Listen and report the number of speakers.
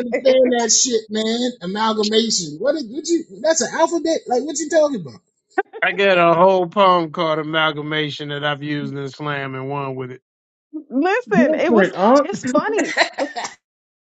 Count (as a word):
three